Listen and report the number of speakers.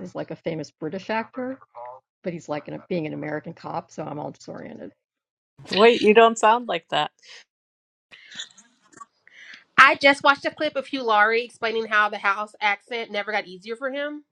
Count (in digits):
3